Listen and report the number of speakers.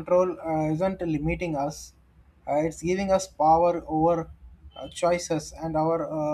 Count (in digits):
1